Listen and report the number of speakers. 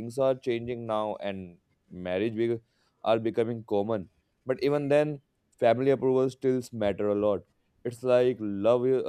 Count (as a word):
one